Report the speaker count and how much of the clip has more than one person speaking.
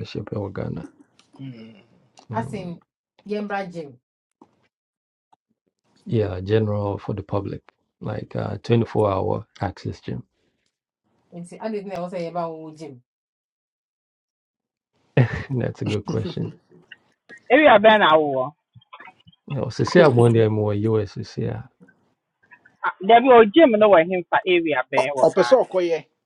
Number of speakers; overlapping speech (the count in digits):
4, about 4%